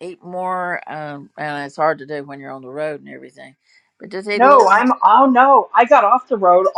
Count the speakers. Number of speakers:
2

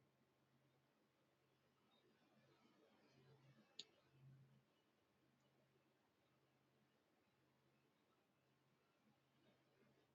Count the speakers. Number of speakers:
0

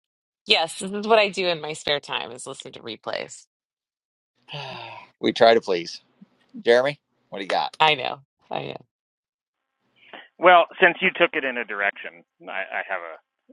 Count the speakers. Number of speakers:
3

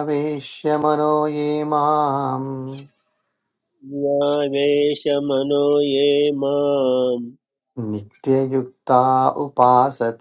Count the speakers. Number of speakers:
2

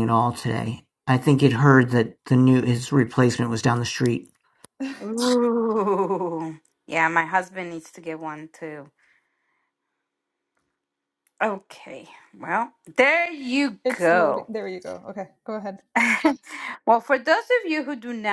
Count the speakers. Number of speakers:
3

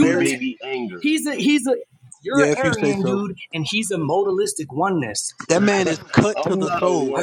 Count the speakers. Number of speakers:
3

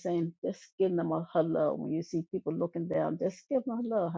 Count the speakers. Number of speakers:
1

